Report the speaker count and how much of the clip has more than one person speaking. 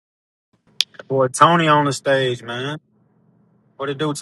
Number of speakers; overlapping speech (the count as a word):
one, no overlap